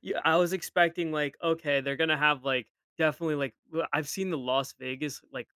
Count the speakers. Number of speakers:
1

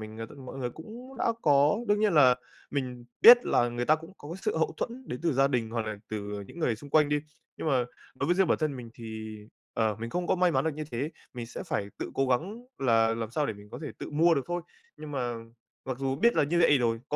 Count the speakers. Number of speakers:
1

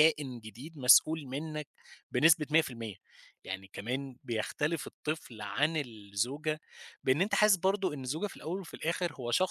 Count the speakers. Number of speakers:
1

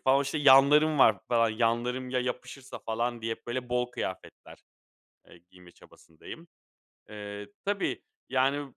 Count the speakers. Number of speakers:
1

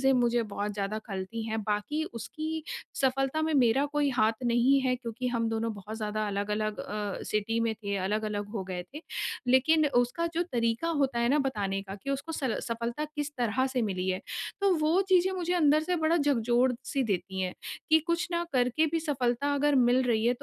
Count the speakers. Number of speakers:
1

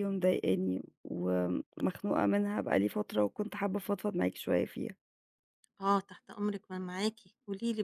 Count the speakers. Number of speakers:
2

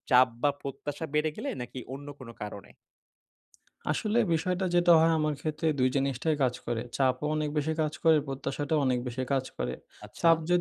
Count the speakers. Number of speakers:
2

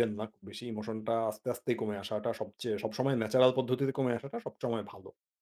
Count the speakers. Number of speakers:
1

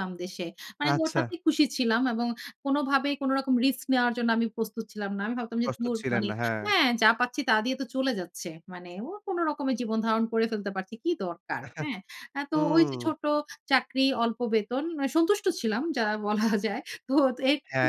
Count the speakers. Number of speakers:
2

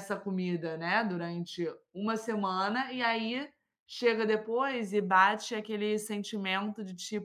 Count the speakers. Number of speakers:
1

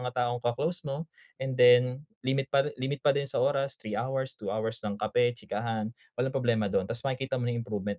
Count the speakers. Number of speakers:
1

